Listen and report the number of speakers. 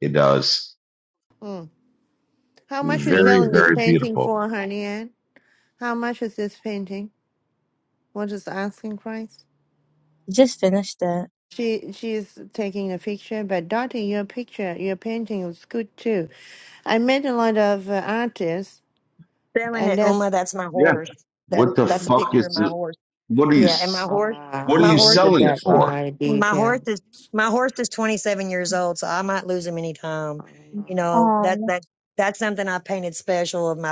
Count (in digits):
4